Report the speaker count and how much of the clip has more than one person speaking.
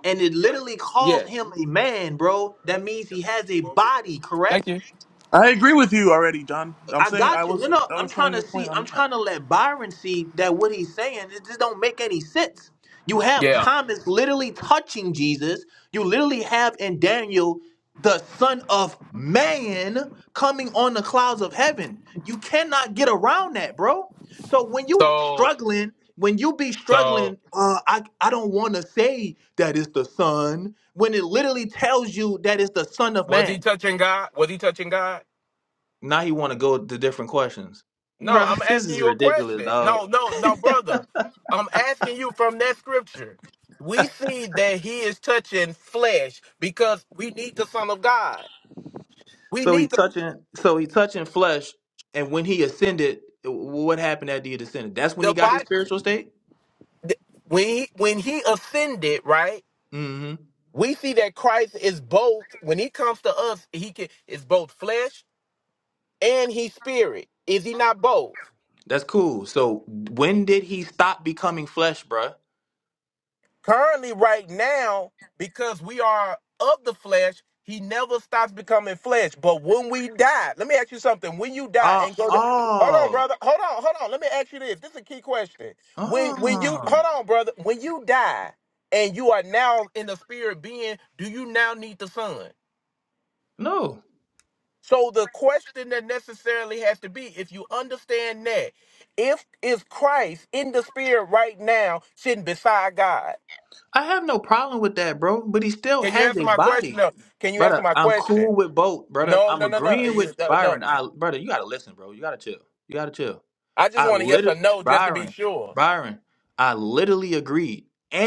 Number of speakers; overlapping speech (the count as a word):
three, about 11%